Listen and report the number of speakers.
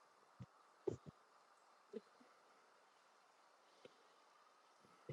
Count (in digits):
0